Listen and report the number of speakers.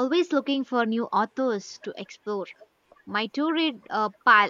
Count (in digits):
1